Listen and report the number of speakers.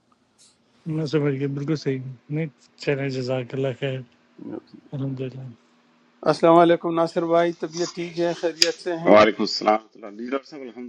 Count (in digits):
3